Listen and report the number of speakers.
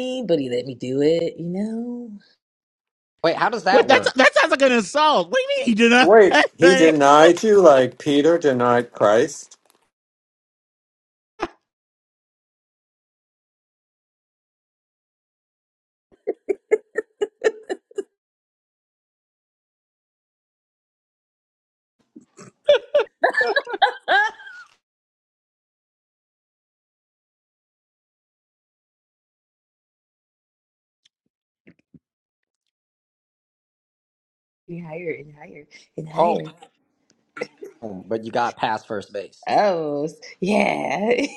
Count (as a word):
four